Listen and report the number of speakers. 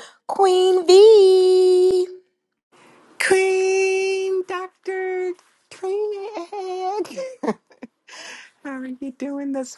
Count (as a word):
two